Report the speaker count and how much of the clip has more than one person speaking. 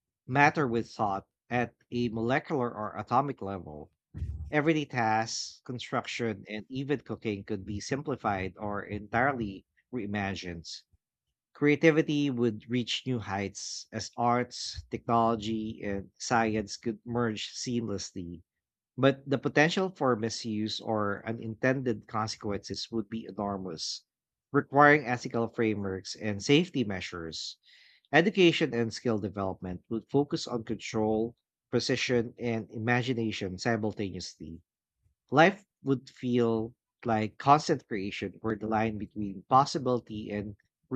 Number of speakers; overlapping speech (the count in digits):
1, no overlap